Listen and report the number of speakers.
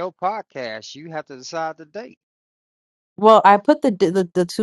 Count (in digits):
2